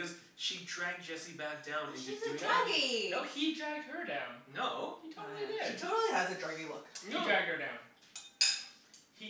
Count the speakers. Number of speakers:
4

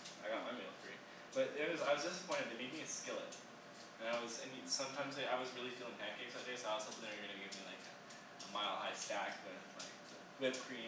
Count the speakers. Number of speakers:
1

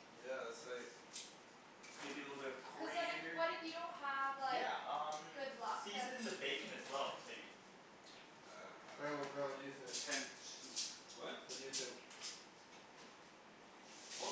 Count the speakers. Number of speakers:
4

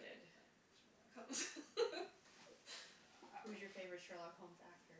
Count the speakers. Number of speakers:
2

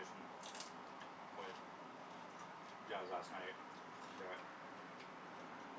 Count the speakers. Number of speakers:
1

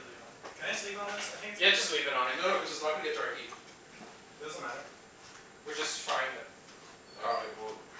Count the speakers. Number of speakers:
3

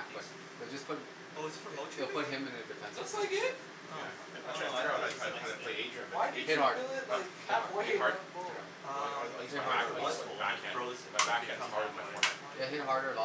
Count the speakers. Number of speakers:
4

